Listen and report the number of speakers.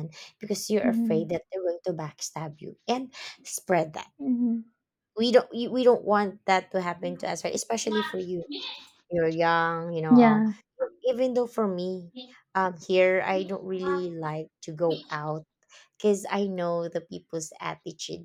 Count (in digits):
2